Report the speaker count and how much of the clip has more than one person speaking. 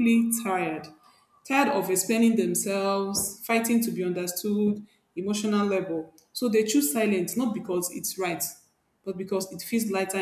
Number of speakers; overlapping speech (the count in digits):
1, no overlap